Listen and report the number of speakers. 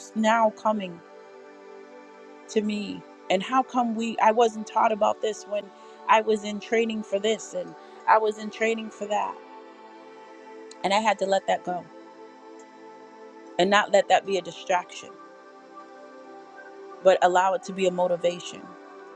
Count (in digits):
1